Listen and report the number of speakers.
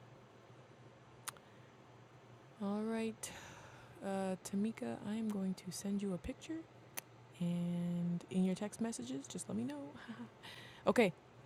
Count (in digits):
1